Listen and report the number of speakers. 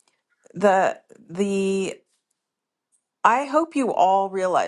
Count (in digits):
1